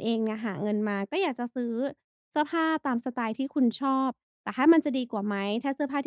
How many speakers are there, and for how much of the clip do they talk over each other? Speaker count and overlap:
1, no overlap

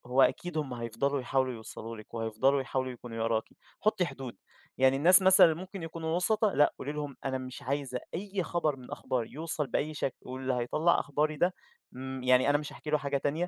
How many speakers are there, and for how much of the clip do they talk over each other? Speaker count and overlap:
1, no overlap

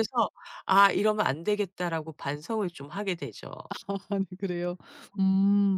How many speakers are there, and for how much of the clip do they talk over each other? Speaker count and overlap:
2, under 1%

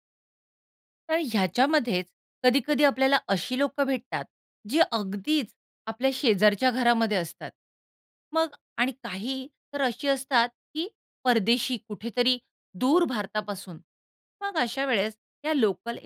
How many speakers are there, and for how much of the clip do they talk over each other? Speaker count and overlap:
1, no overlap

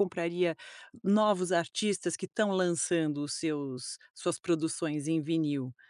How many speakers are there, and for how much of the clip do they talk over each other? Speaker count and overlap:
1, no overlap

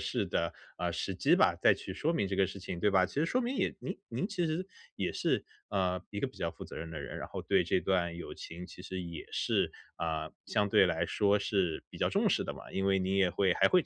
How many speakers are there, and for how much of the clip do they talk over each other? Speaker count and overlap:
1, no overlap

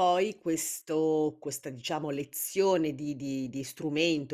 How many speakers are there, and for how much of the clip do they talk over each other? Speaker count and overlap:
1, no overlap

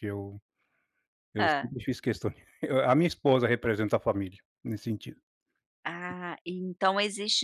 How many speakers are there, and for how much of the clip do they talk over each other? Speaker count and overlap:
2, about 4%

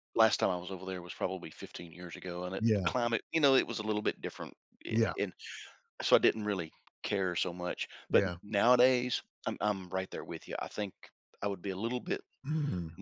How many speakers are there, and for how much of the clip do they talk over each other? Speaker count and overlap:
2, about 6%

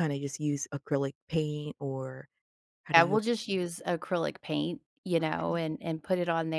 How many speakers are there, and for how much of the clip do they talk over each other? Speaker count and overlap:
2, about 8%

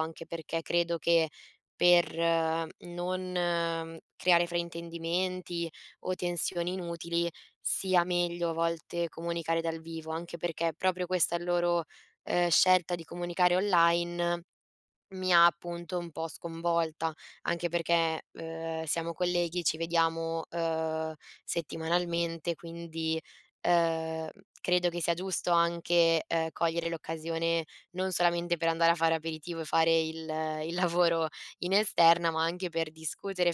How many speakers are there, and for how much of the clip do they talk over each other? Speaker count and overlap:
1, no overlap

